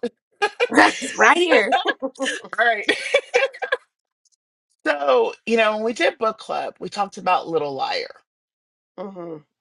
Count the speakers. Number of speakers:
2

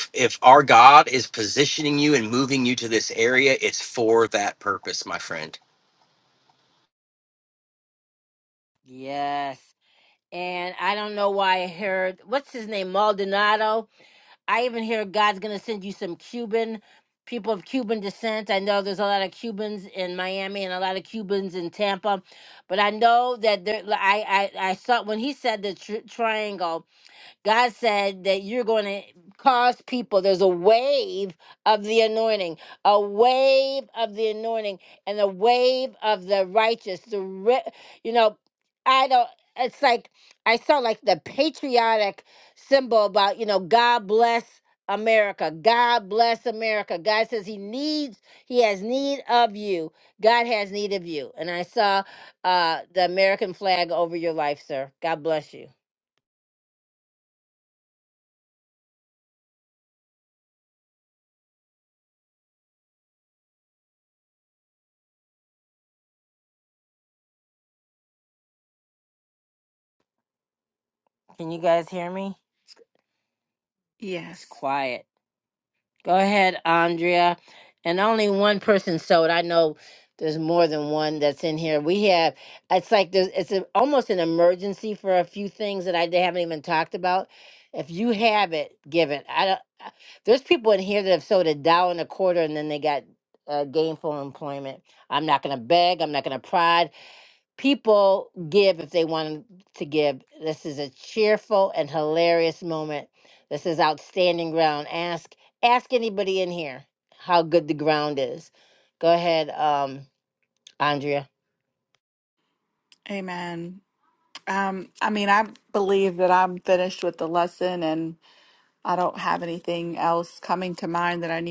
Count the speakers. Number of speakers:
3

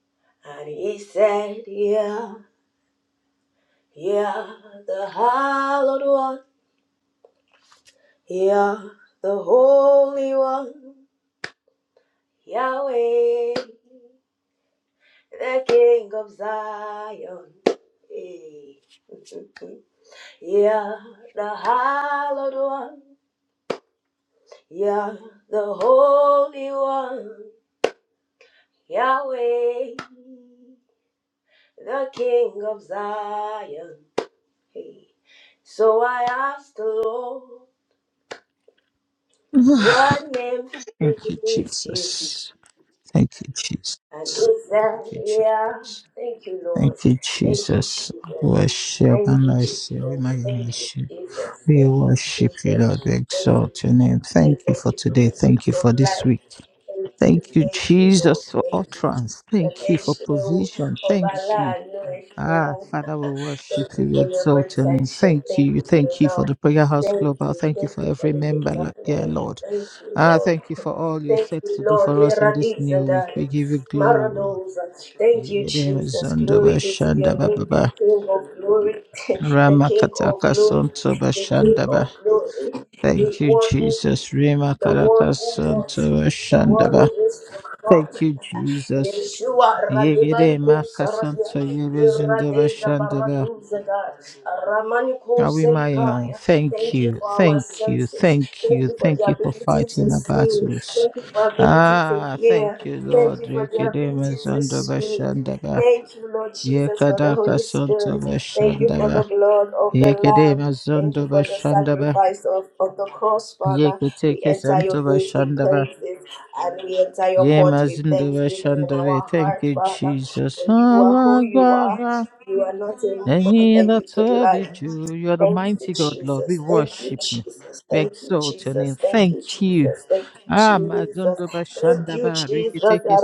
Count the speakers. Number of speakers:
2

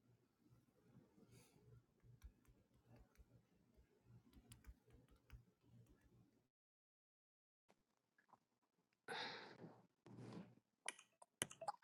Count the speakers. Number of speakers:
0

